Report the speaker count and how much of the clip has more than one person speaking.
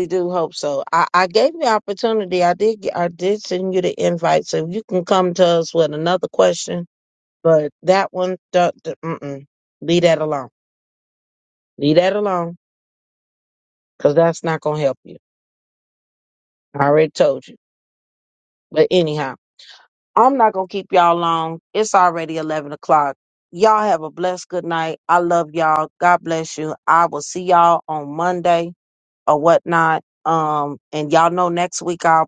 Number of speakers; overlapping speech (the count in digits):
1, no overlap